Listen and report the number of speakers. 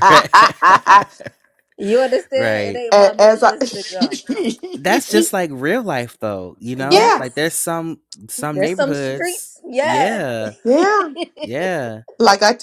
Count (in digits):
3